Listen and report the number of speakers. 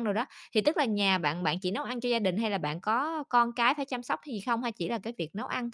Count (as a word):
one